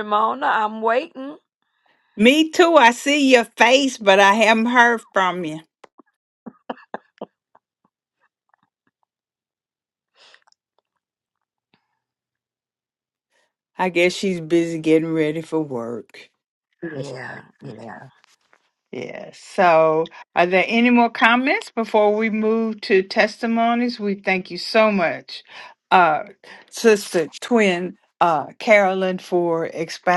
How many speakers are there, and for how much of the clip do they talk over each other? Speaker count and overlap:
2, under 1%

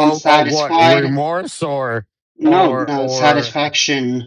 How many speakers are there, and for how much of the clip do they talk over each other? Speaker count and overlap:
2, about 52%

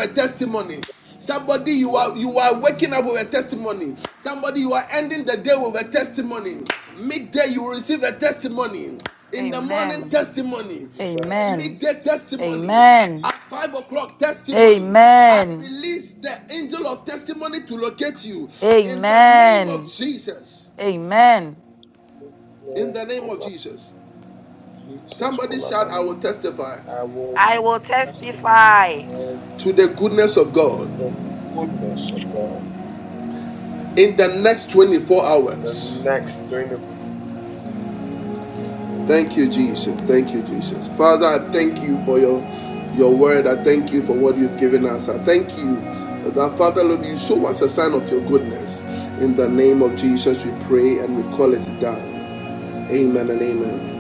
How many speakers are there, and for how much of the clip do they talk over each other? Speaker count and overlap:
3, about 7%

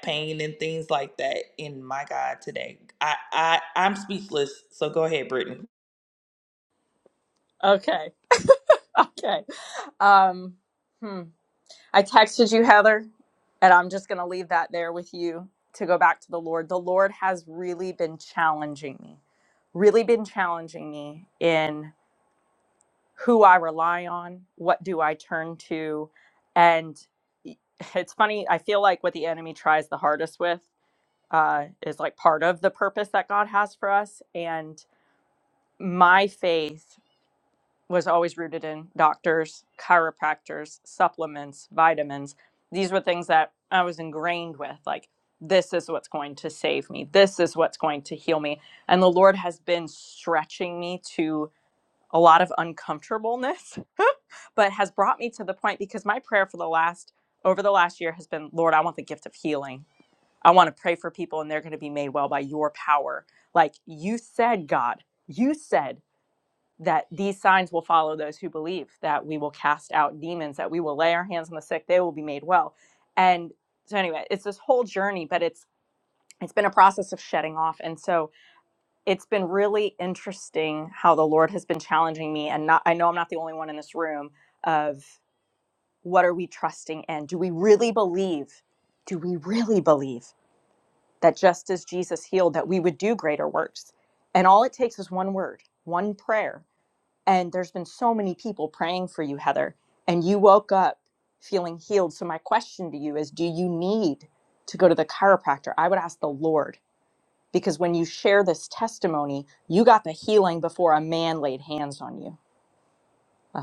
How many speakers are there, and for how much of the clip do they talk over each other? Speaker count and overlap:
2, no overlap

